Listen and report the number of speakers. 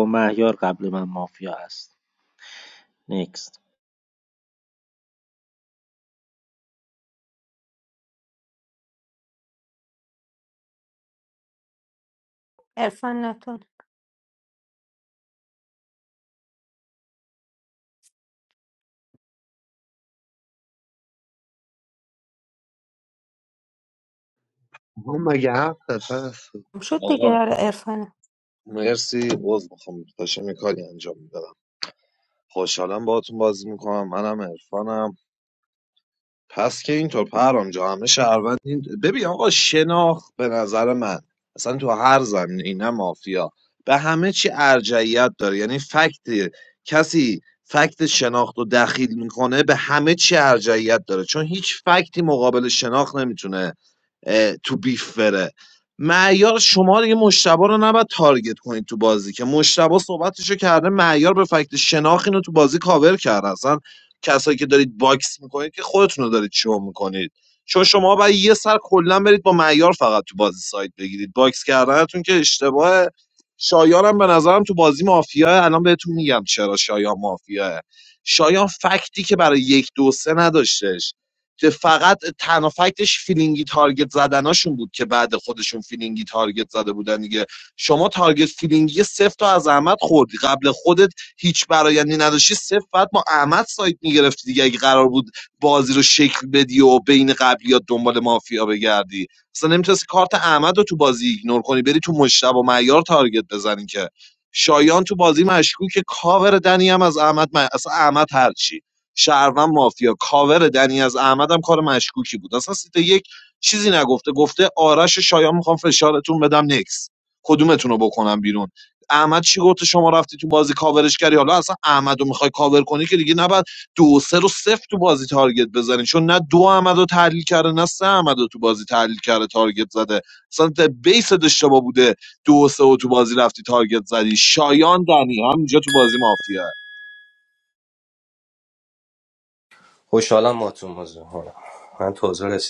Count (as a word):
five